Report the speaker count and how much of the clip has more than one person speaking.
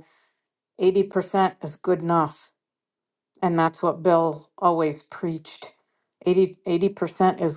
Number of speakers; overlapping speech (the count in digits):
1, no overlap